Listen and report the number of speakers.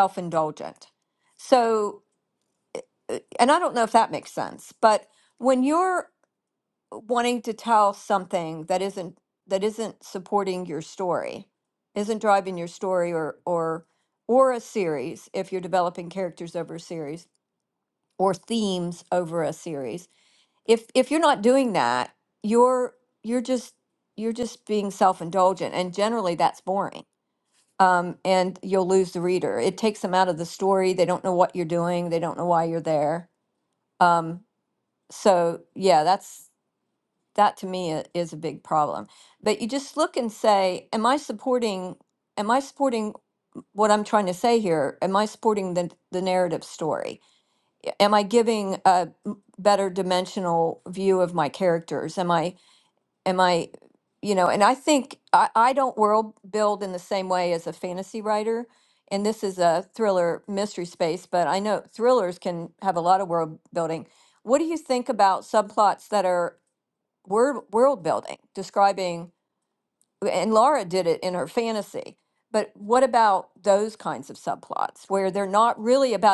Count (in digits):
1